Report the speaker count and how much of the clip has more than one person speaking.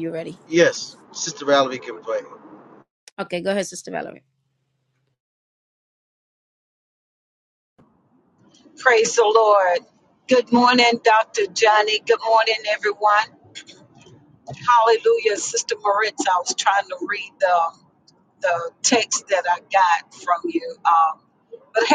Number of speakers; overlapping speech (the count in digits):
3, no overlap